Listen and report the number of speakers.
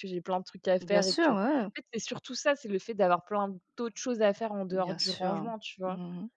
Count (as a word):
two